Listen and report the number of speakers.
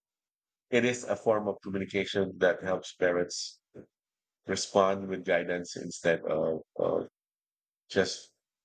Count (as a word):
one